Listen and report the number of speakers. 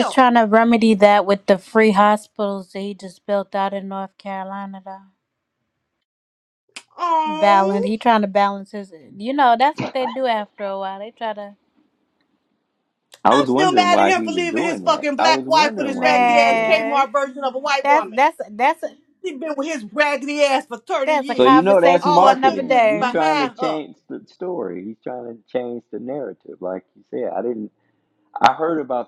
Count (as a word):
three